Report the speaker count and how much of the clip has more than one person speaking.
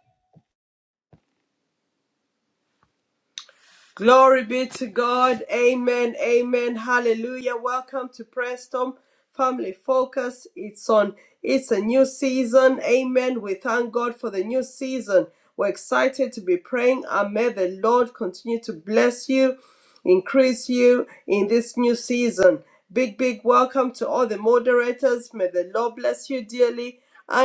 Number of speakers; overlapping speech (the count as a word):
one, no overlap